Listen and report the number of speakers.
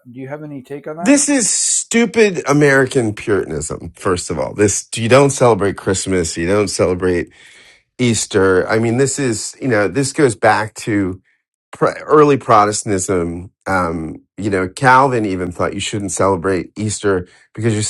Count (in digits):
2